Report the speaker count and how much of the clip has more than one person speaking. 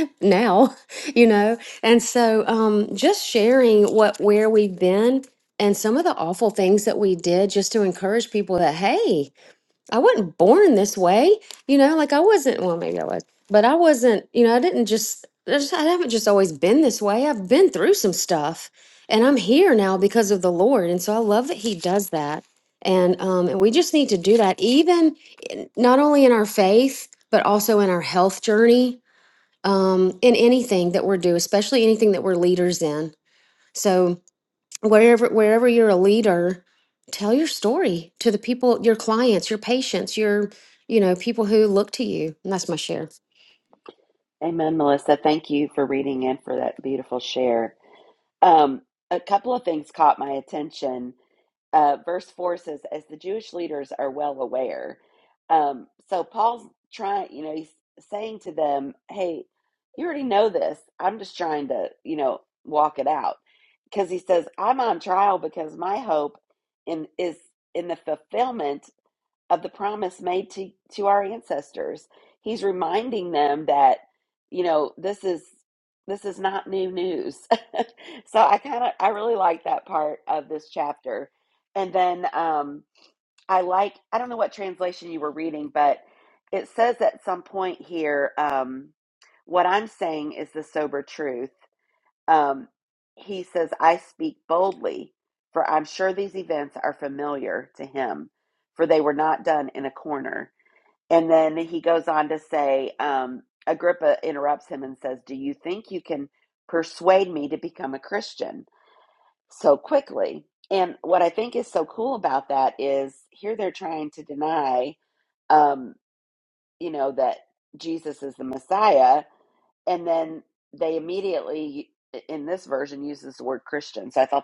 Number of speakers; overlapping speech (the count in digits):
2, no overlap